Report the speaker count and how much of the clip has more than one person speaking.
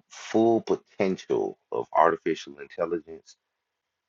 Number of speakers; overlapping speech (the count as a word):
one, no overlap